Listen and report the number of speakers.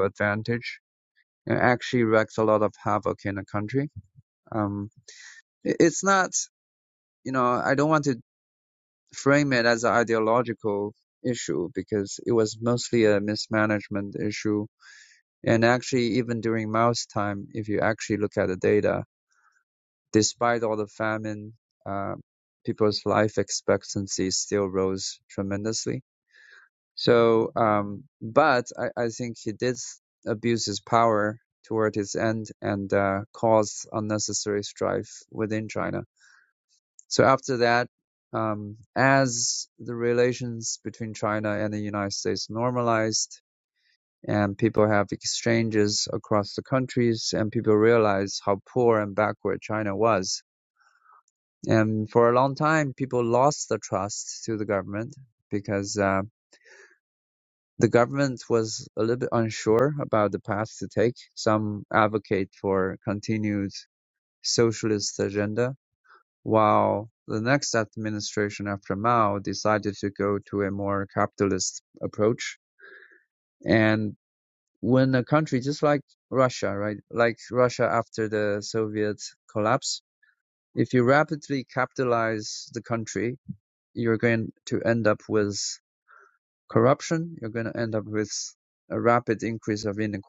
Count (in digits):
1